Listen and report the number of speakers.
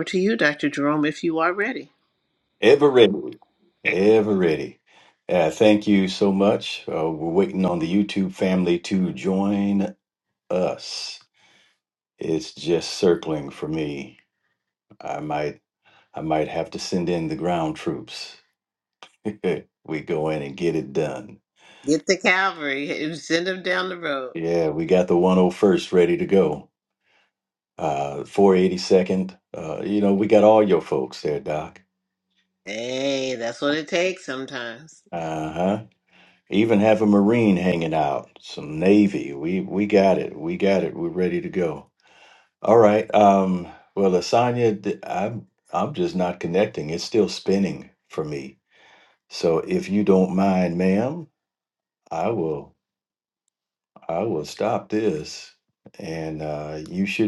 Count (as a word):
two